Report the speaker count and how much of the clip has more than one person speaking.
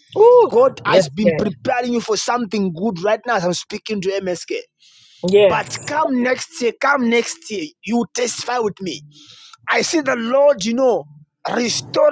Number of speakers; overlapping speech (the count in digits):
2, about 12%